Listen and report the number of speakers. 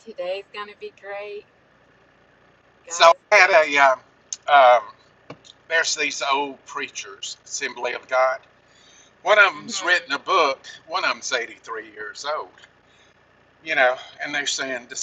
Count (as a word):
two